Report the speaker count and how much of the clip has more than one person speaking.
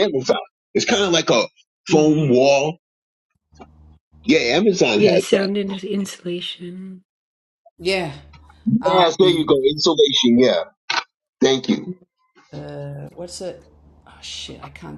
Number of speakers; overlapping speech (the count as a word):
three, about 7%